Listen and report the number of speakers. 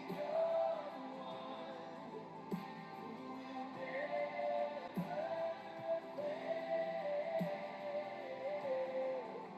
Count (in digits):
0